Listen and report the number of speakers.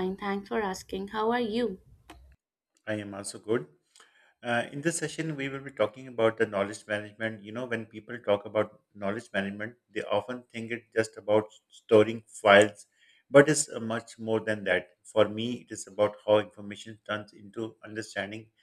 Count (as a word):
two